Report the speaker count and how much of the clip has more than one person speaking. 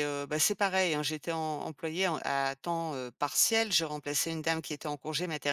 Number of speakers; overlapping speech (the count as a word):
one, no overlap